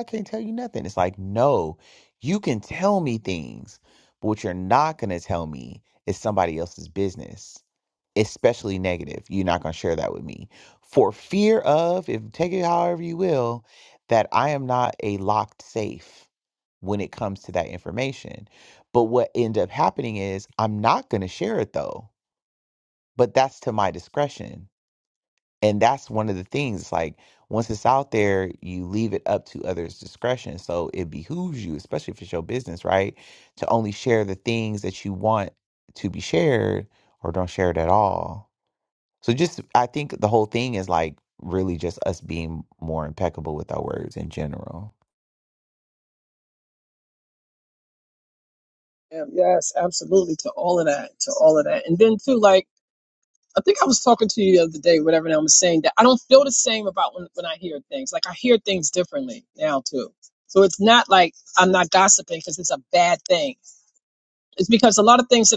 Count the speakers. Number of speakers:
2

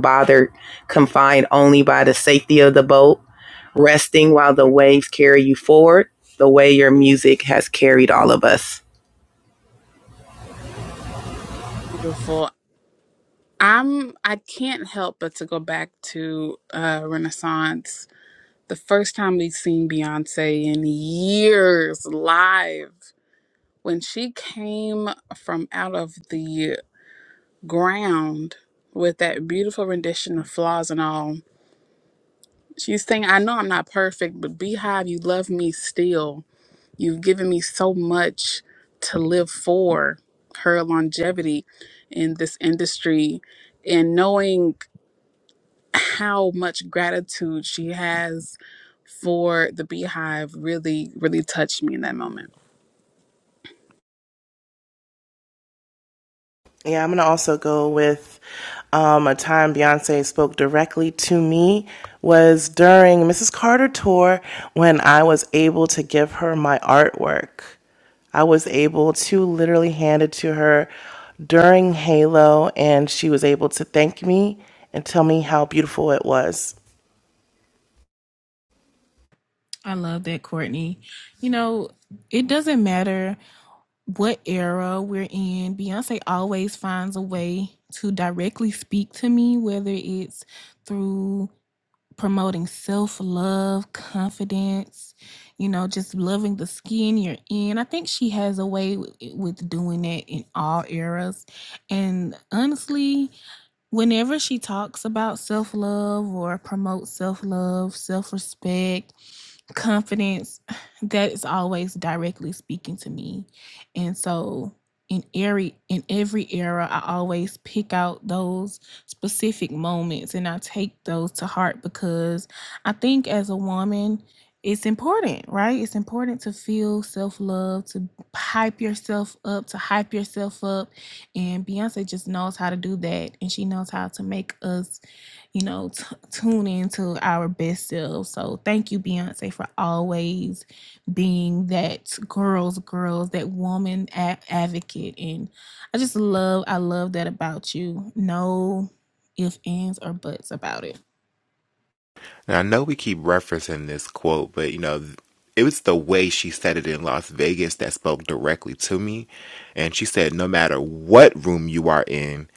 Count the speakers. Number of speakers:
5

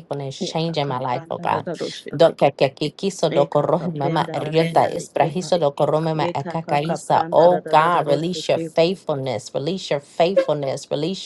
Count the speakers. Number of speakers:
2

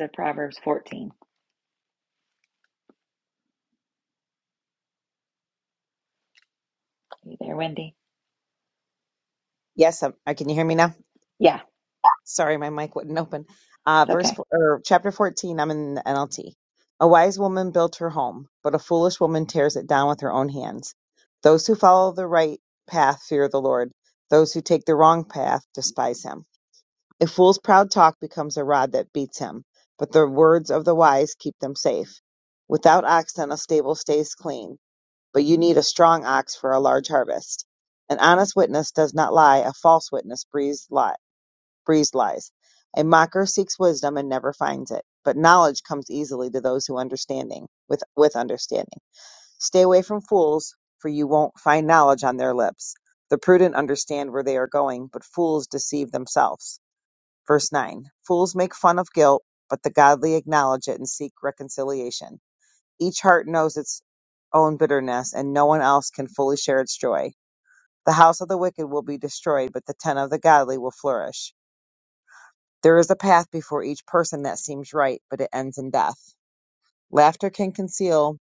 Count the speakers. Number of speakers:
2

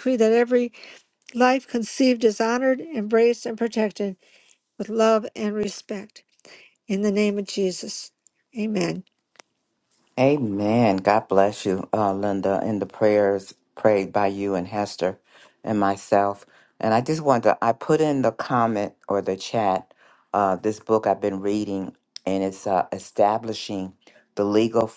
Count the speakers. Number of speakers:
2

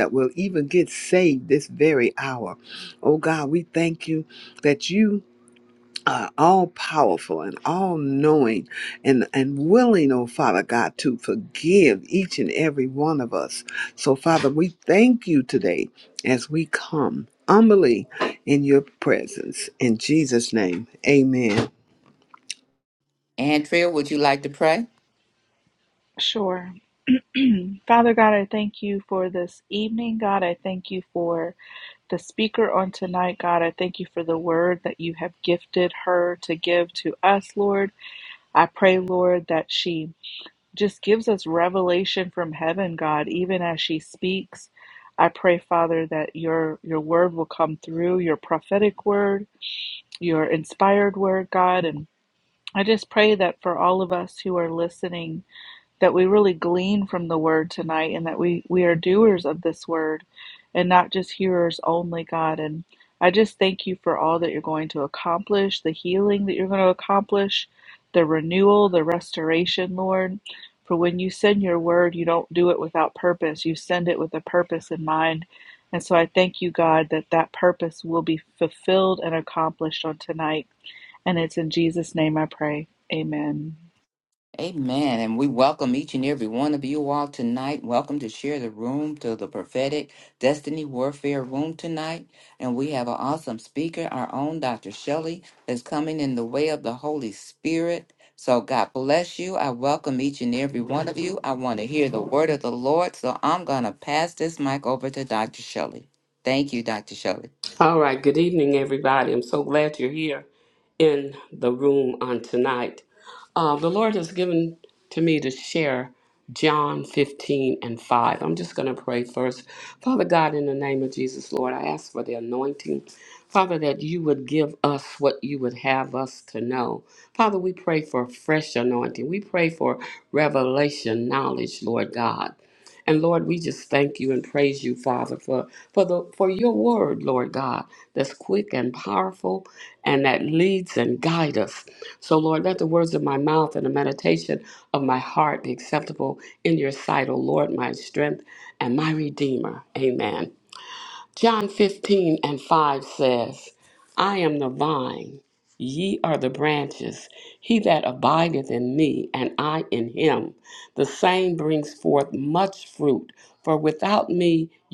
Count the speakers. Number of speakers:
4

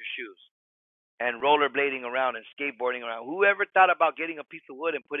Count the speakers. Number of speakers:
1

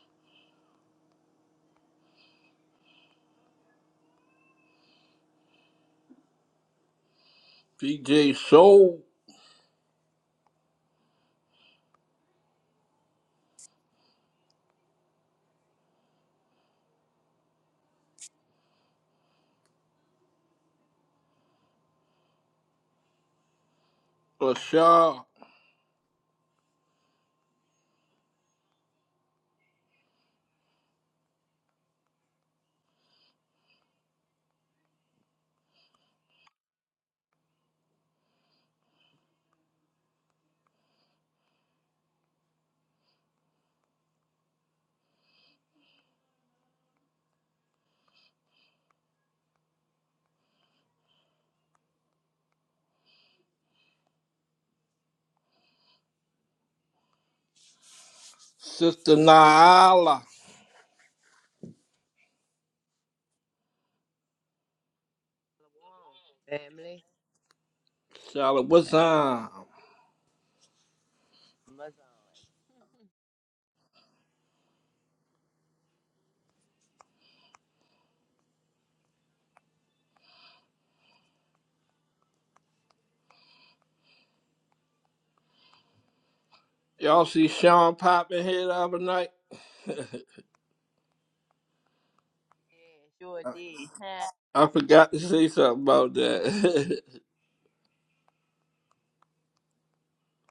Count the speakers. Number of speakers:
2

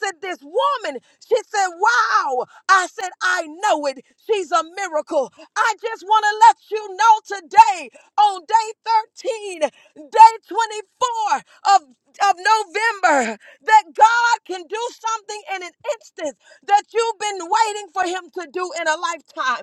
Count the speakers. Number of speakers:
1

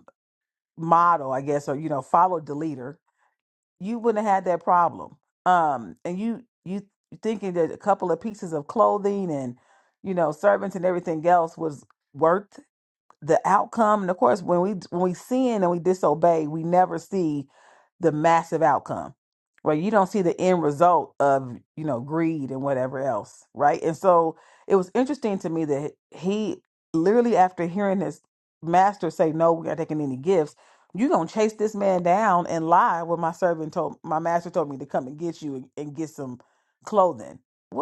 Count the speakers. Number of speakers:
1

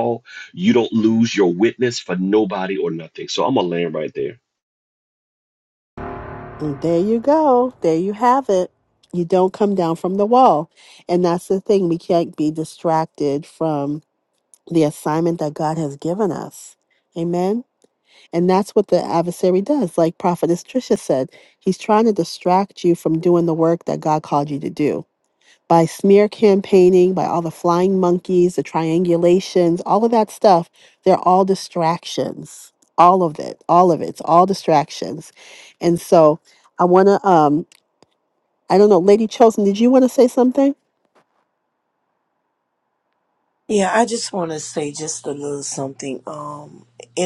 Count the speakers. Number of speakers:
3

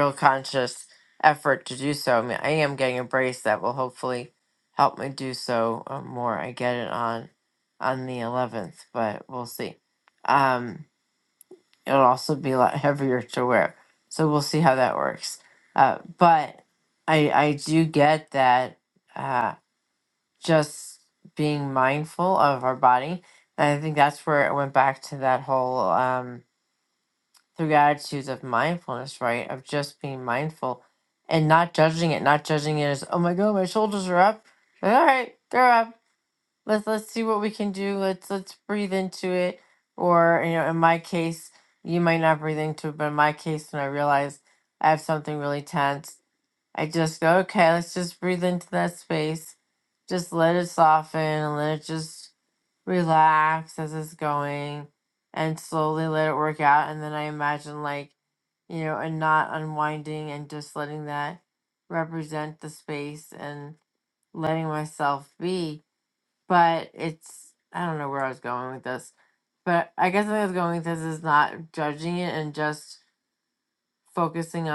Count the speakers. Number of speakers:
1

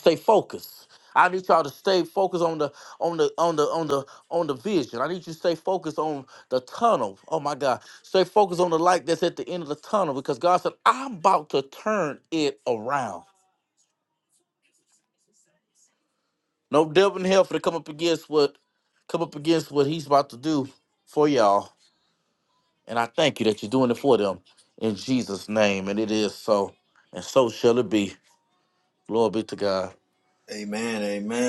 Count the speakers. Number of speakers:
2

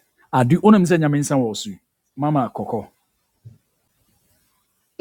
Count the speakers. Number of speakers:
1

